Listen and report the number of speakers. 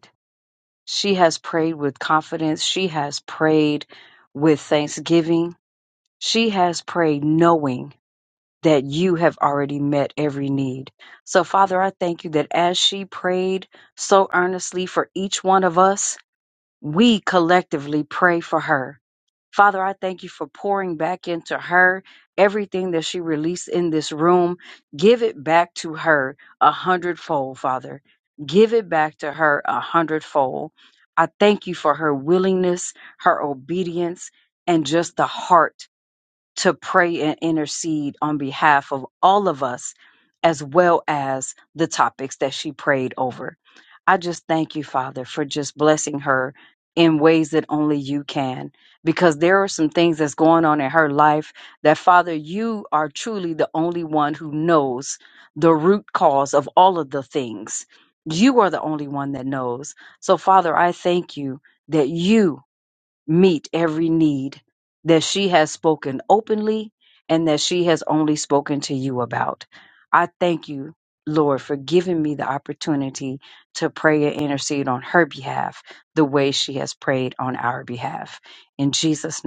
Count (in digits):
1